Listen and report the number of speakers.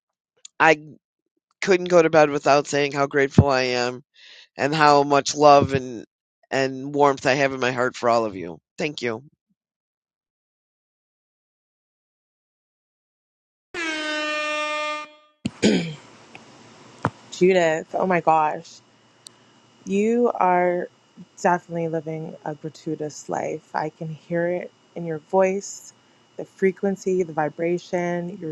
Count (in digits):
2